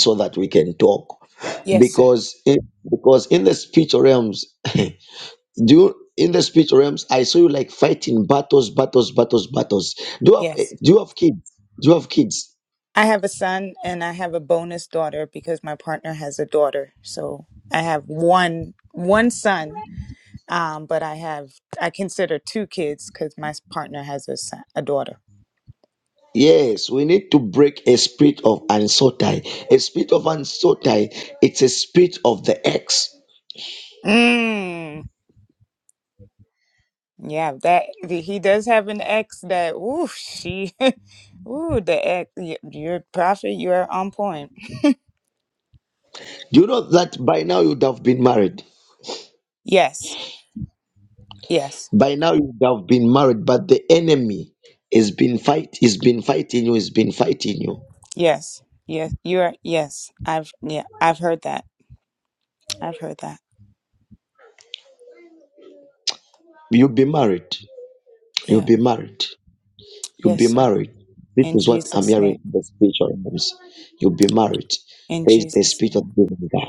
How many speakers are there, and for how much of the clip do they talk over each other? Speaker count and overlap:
2, about 3%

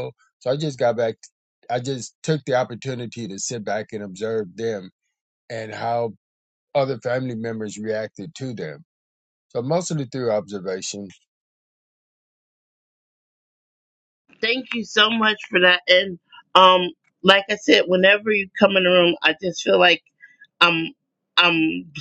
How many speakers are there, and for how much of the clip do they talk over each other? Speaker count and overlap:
2, no overlap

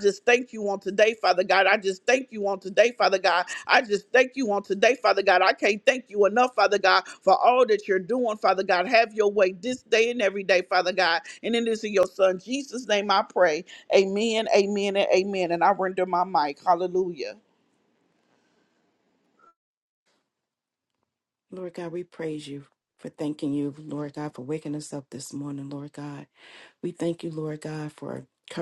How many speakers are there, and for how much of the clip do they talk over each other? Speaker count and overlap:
2, no overlap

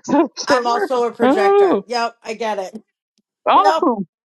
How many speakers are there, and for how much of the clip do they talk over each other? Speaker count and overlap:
2, about 30%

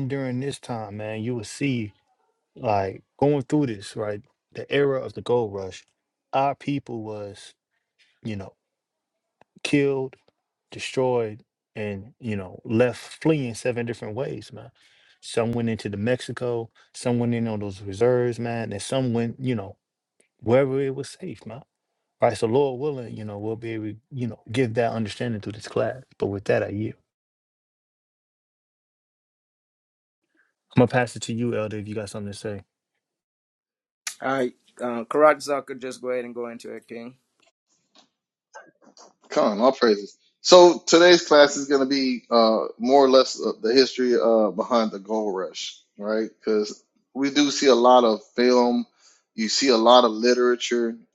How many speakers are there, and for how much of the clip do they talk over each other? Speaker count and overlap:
3, no overlap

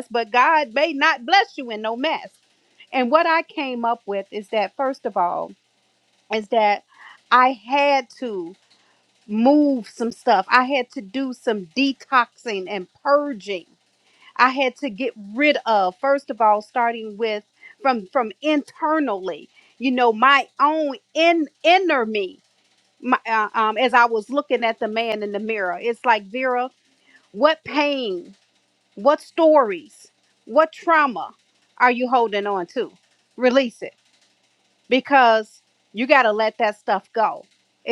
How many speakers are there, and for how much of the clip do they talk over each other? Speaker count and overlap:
1, no overlap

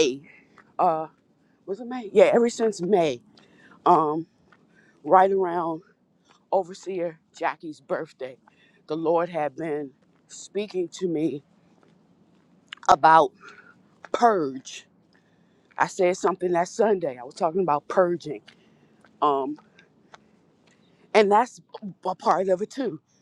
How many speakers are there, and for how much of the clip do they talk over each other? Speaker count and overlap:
1, no overlap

